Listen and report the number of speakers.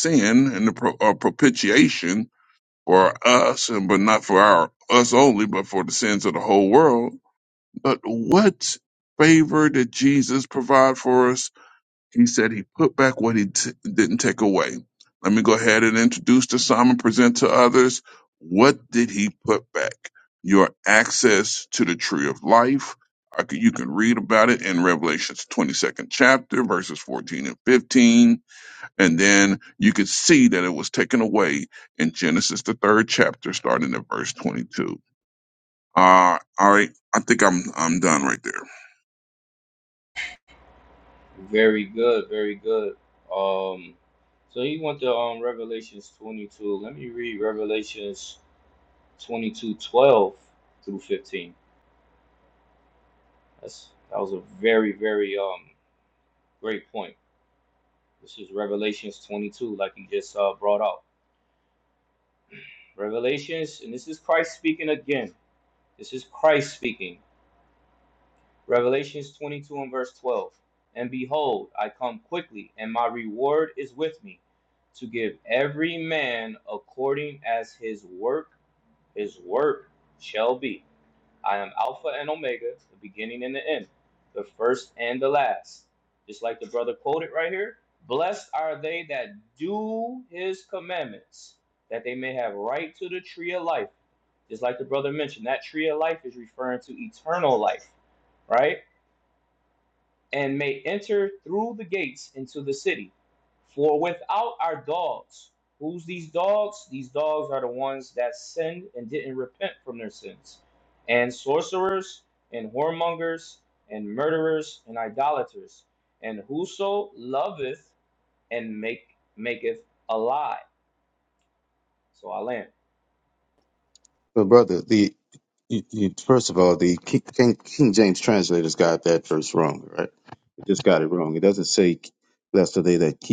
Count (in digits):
3